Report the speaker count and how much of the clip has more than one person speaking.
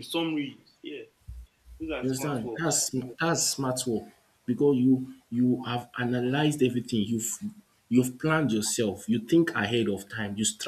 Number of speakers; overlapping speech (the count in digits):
2, about 7%